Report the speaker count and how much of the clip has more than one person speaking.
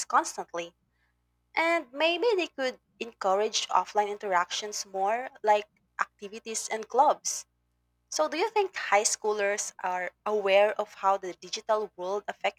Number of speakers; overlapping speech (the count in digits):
1, no overlap